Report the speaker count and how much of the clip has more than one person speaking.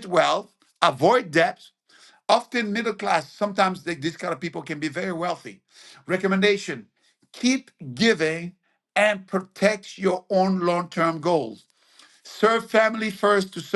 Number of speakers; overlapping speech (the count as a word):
one, no overlap